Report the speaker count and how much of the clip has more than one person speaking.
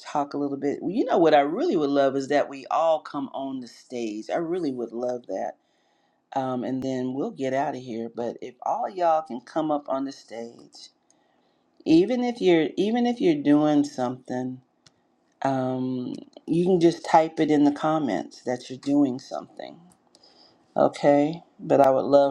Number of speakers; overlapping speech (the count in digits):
1, no overlap